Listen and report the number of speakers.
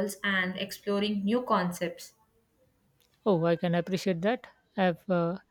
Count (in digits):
2